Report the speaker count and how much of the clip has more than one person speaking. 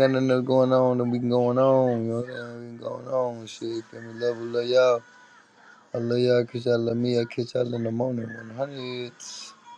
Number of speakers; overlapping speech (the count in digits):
1, no overlap